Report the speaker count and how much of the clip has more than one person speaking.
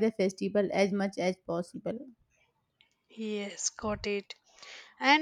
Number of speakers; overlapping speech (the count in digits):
2, no overlap